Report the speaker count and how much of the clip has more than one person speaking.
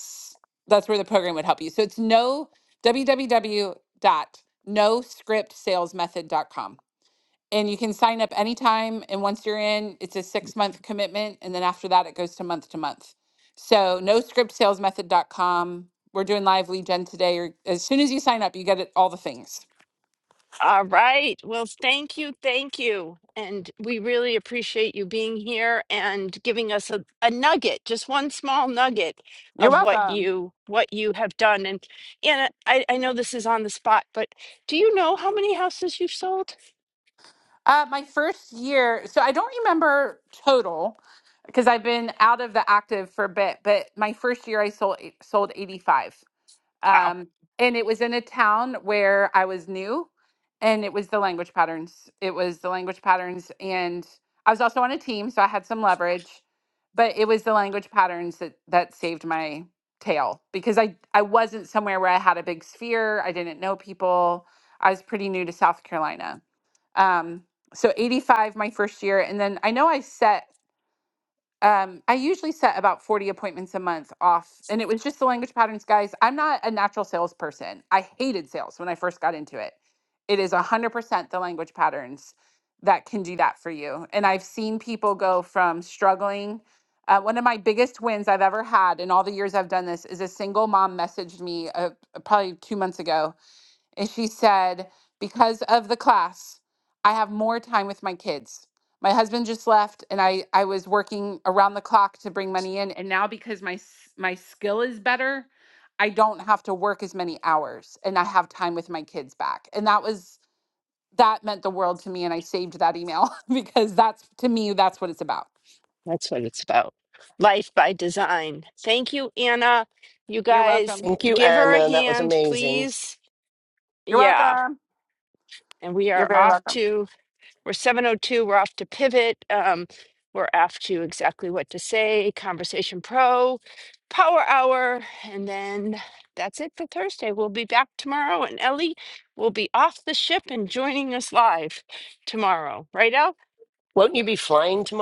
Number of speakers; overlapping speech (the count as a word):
three, about 3%